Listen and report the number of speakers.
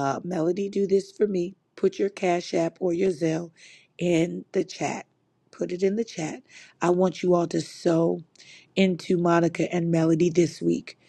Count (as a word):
one